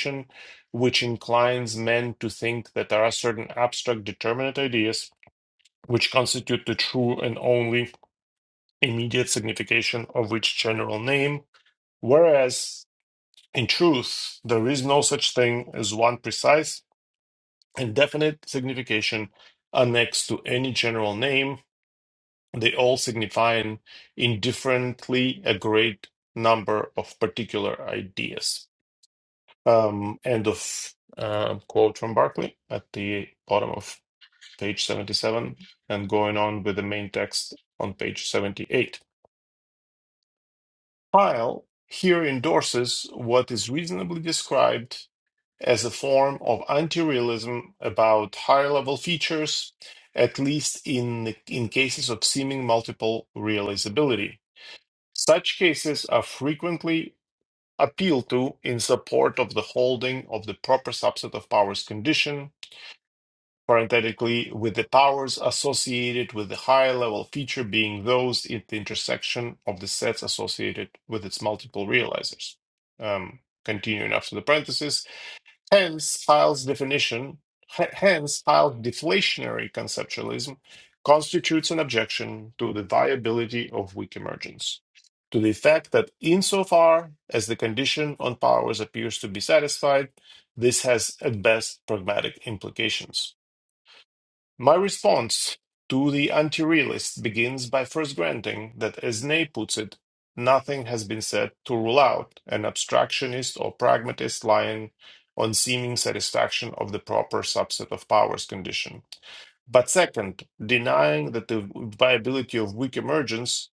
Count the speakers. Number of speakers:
1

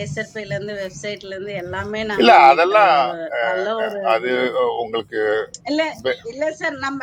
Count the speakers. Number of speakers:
2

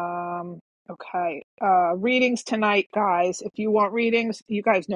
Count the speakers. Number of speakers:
1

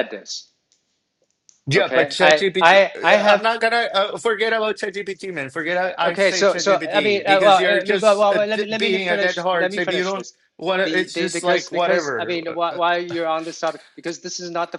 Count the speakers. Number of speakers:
2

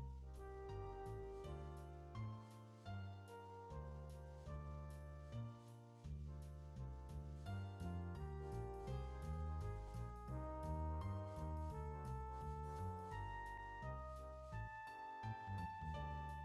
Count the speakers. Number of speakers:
0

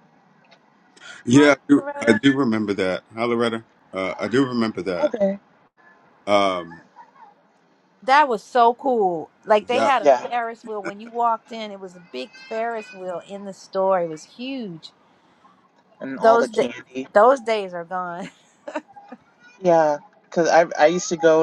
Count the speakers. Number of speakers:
3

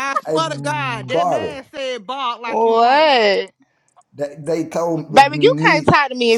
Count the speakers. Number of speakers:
3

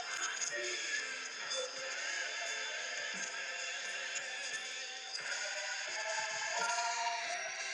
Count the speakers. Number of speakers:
0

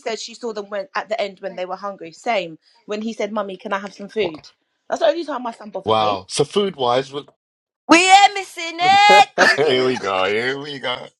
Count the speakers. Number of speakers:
3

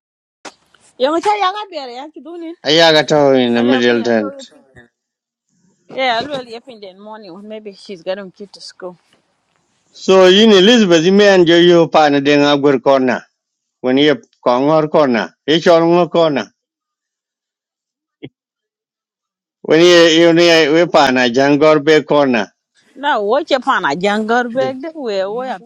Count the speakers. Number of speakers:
2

